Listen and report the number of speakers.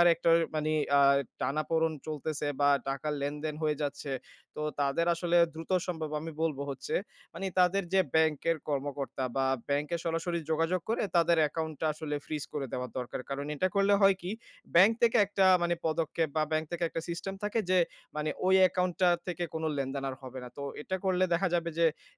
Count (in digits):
1